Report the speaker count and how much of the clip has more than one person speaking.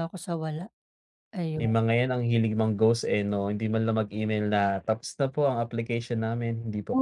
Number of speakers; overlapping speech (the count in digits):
2, about 3%